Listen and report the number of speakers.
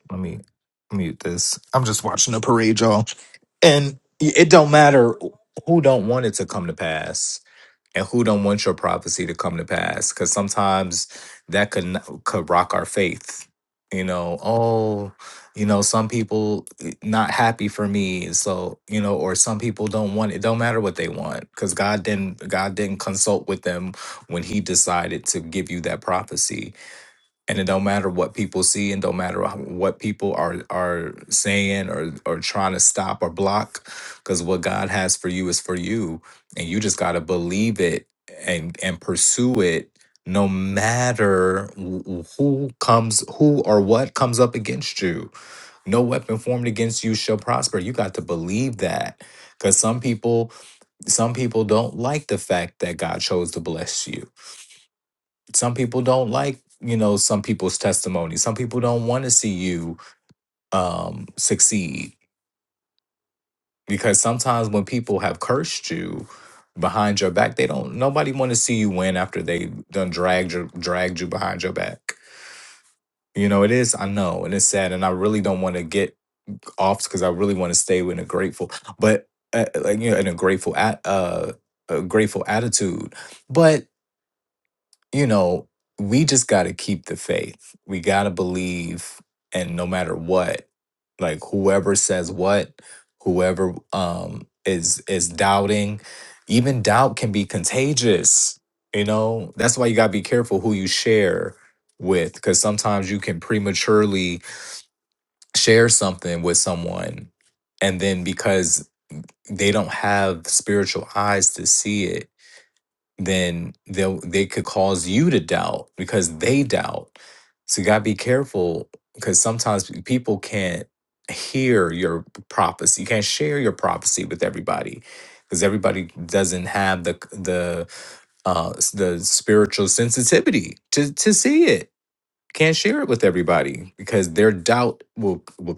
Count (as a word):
one